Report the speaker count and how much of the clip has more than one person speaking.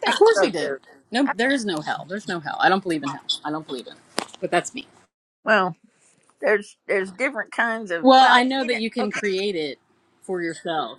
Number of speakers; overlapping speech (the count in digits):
2, about 20%